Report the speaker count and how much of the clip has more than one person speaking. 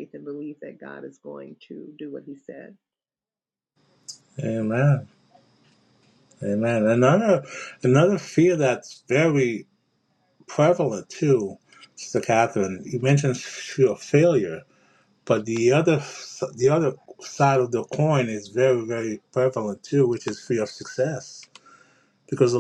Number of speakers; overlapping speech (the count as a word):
two, no overlap